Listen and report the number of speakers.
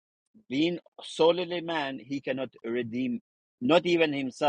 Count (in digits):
1